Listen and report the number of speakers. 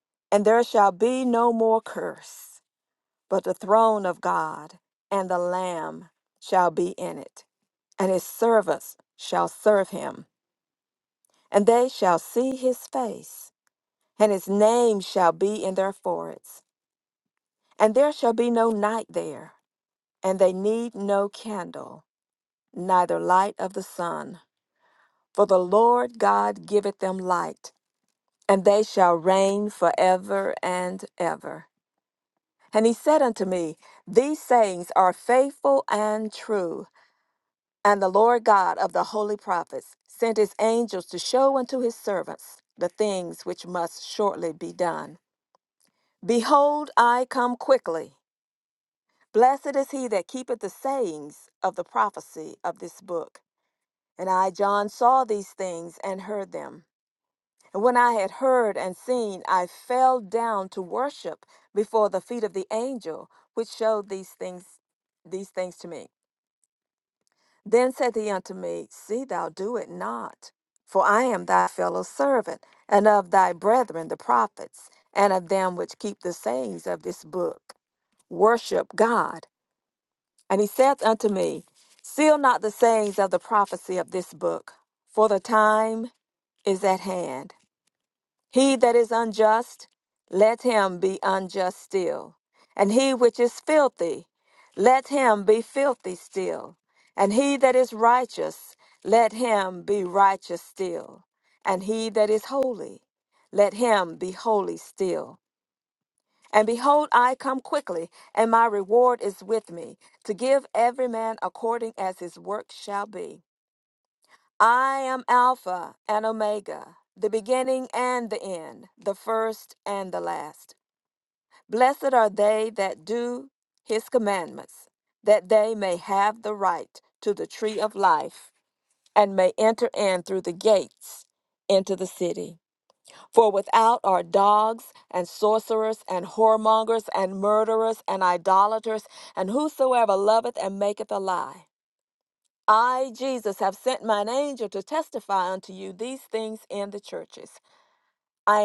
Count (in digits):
1